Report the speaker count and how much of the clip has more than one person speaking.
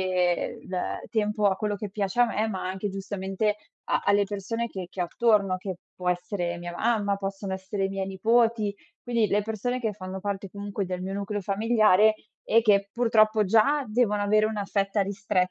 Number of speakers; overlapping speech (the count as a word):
one, no overlap